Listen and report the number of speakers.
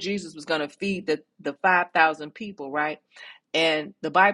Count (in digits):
1